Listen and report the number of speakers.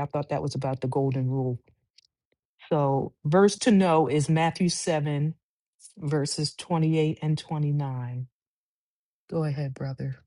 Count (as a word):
one